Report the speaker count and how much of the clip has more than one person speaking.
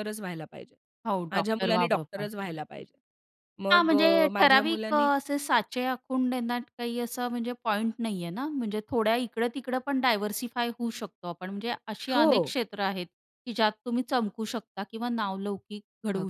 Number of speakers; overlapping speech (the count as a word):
two, about 18%